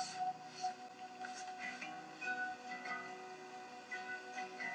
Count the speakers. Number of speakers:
0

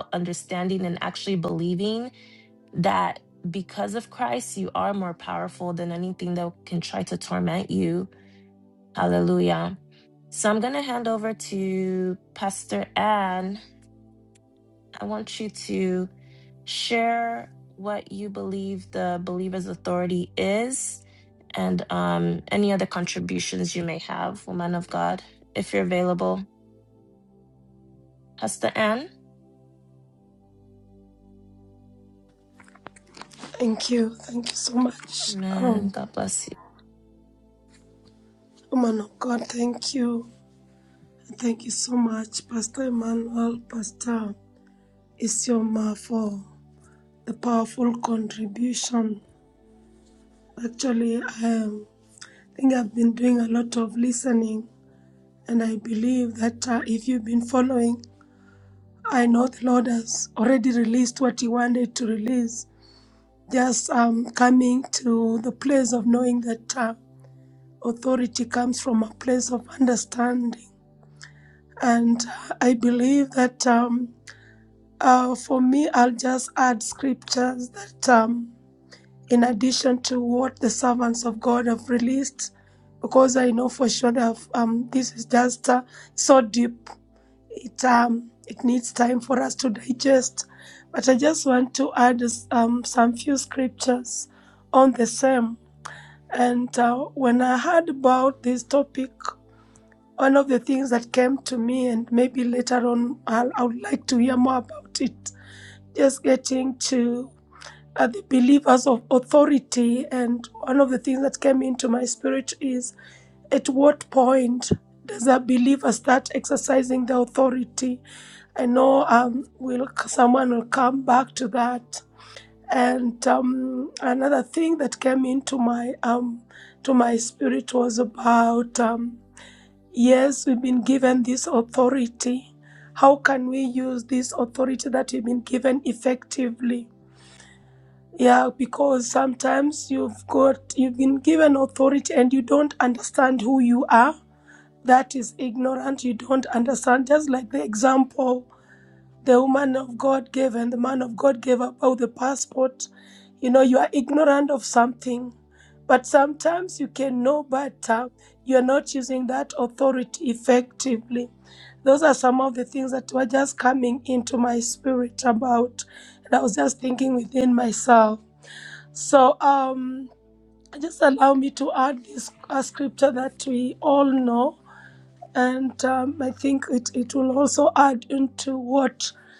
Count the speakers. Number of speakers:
2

